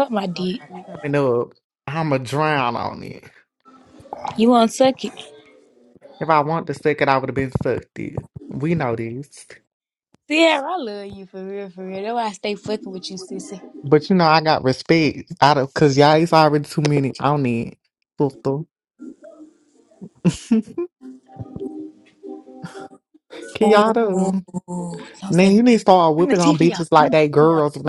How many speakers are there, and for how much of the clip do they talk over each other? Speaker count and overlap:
two, about 11%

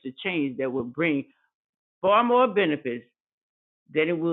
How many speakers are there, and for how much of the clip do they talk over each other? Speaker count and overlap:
one, no overlap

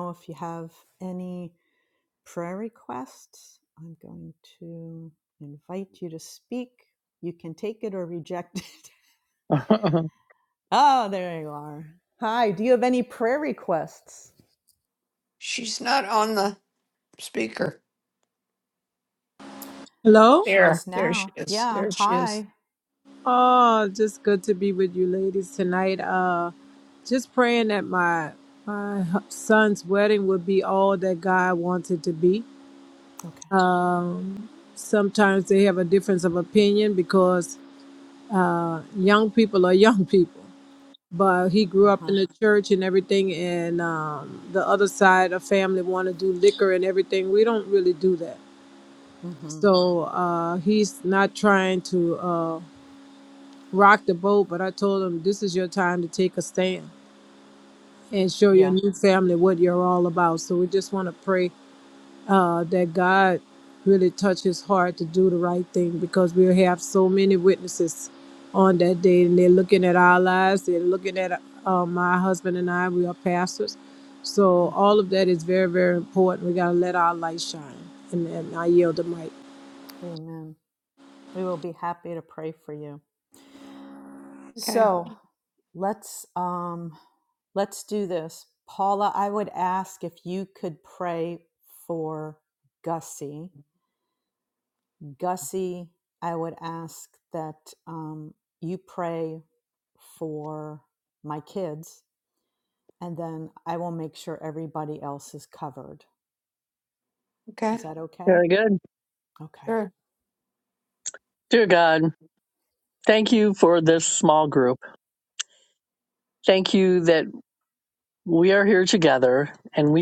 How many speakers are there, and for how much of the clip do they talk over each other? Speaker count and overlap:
four, about 3%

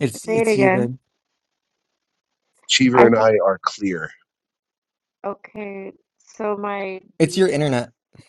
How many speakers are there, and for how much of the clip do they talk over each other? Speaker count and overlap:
three, about 14%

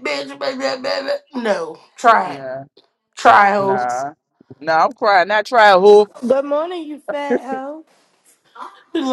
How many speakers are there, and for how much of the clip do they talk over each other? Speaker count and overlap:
three, about 4%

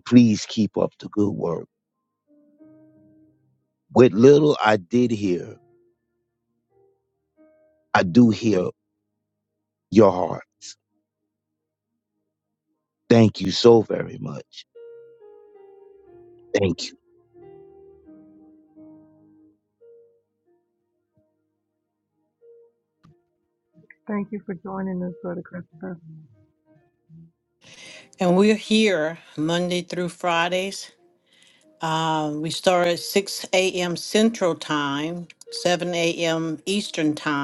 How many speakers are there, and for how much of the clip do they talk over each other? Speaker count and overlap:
three, no overlap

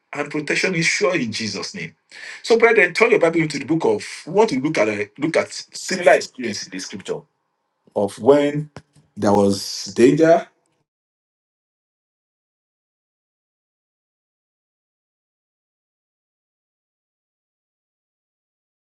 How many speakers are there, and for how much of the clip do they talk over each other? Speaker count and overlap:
one, no overlap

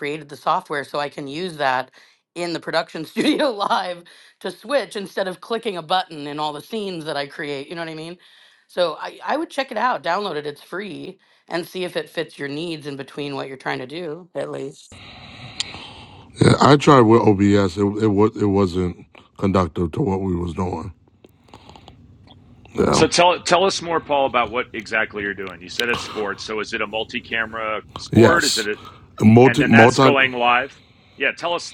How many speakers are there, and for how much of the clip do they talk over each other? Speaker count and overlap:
three, about 5%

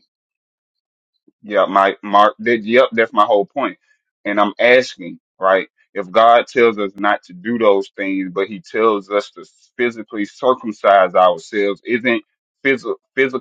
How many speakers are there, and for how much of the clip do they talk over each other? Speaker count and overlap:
one, no overlap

